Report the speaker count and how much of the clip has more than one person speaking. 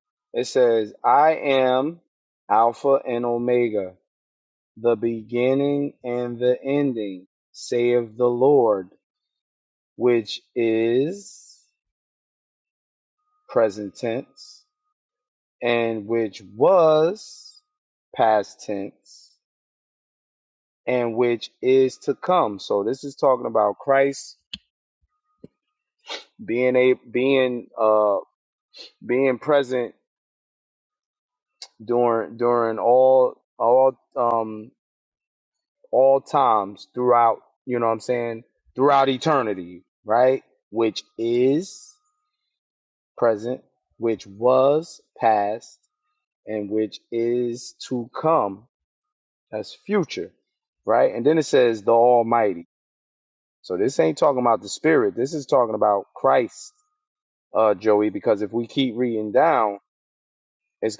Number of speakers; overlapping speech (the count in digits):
1, no overlap